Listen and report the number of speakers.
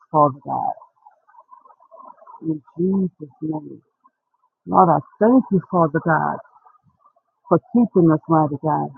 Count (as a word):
one